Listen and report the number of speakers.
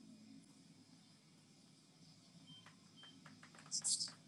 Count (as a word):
zero